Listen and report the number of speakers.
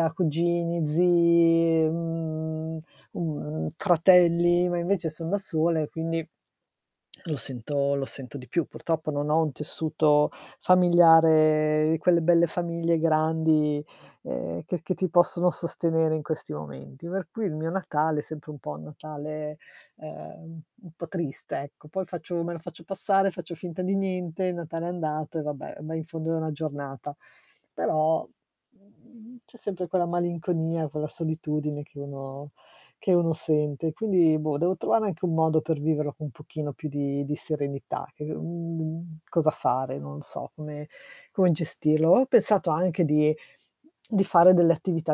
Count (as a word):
one